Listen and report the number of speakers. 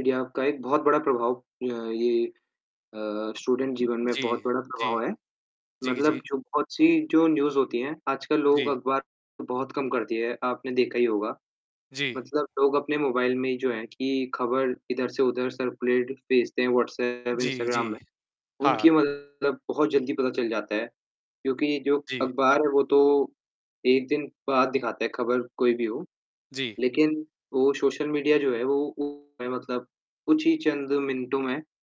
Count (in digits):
2